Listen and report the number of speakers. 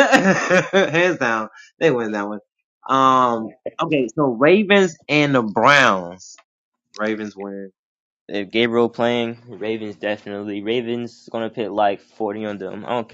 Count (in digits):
2